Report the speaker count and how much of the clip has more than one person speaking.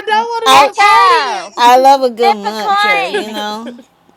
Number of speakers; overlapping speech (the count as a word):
three, about 45%